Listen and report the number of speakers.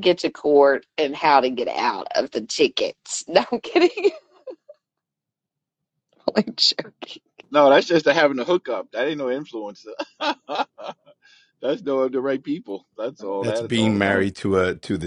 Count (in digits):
3